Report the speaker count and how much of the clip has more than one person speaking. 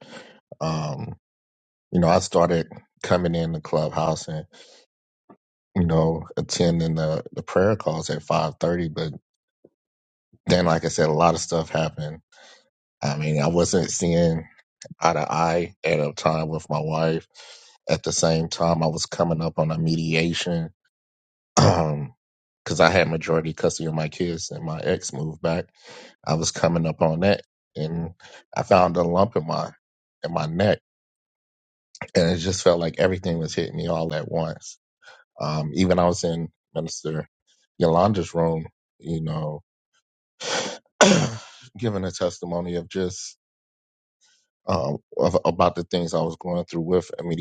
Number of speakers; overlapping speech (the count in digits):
1, no overlap